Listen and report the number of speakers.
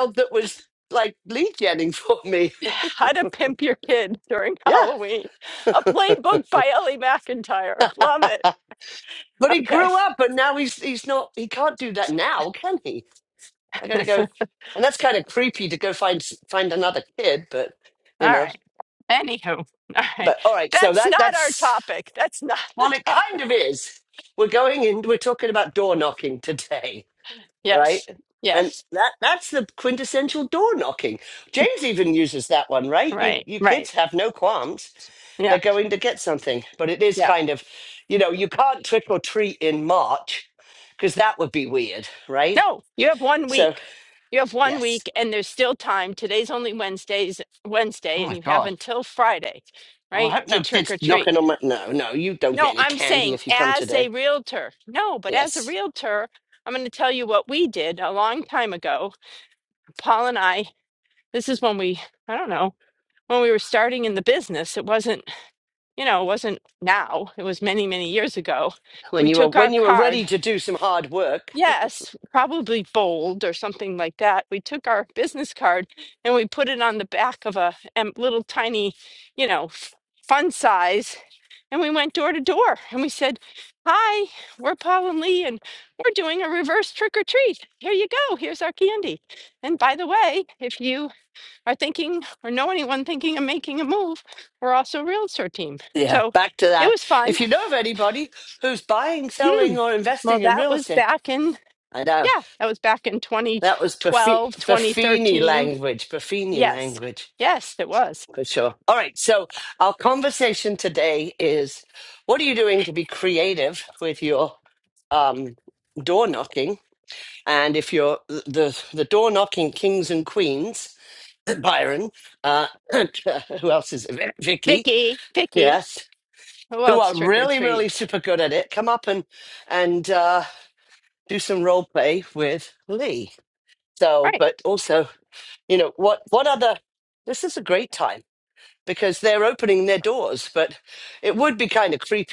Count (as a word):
two